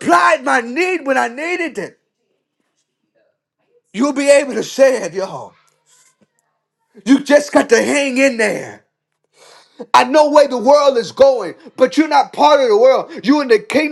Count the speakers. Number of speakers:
1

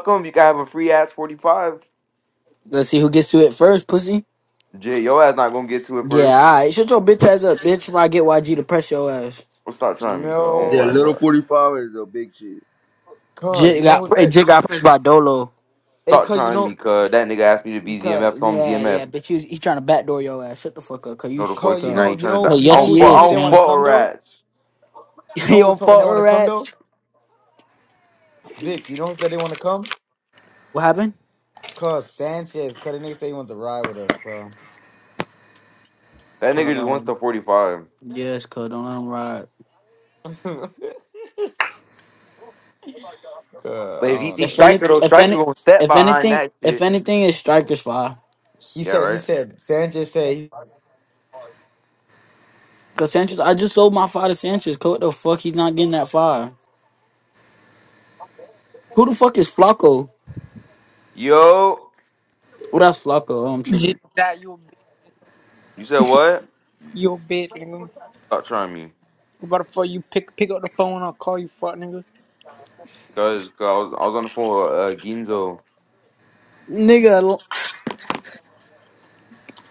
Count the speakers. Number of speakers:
5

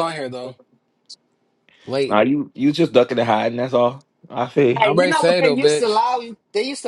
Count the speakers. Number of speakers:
3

